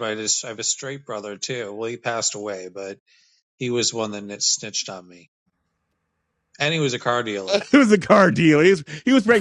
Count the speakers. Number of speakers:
two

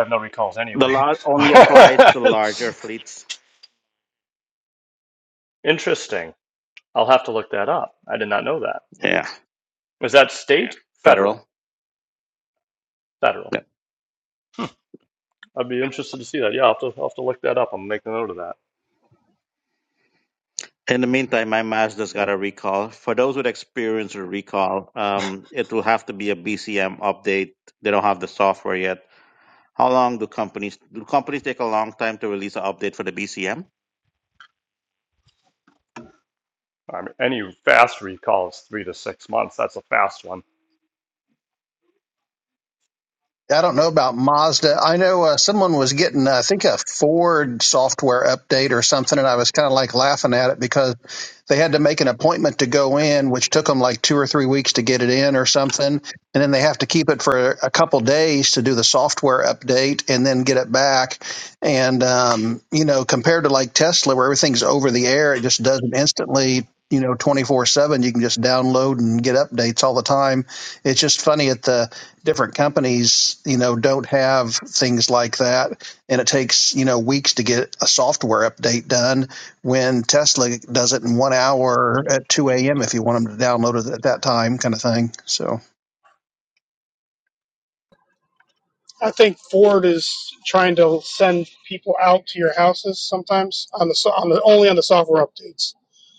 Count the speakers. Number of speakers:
four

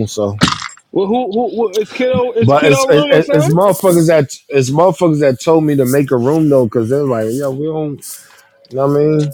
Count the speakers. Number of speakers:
two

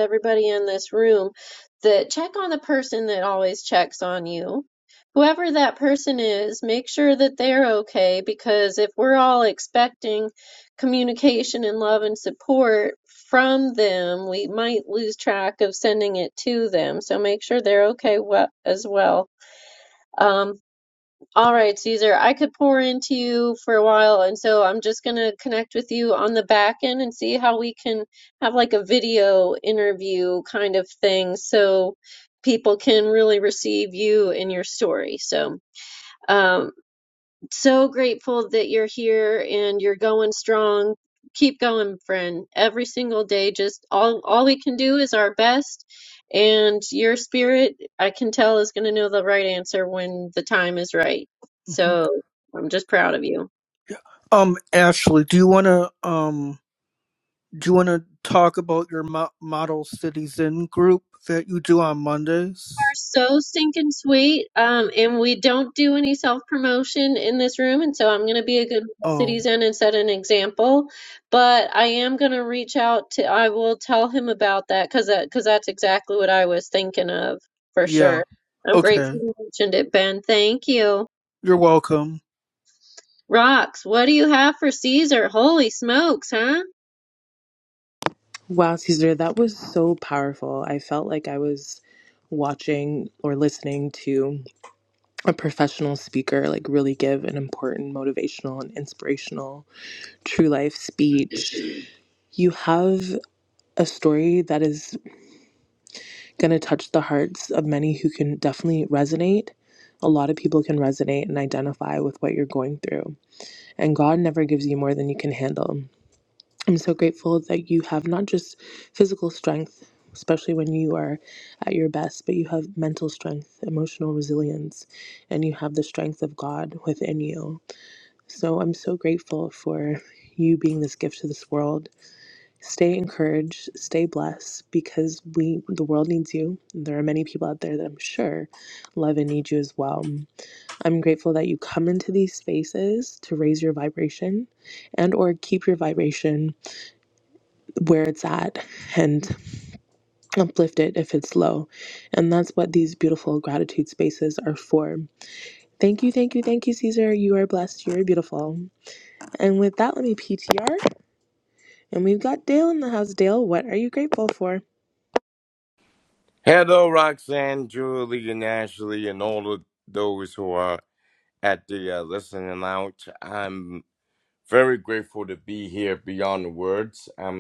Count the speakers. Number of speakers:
four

